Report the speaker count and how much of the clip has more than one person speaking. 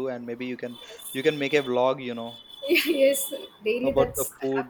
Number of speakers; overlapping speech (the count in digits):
2, about 12%